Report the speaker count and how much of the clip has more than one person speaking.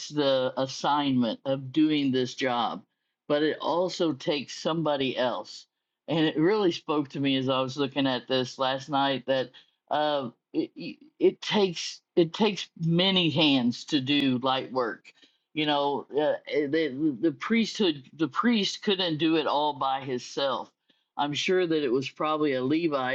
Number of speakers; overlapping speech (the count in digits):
1, no overlap